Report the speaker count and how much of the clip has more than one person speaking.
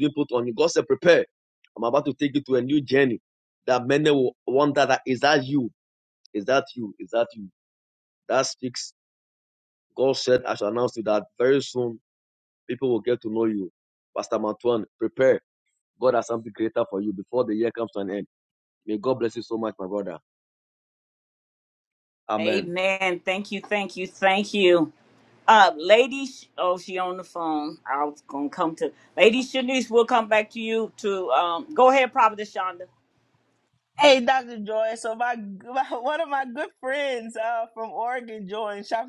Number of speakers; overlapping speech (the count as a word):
three, about 1%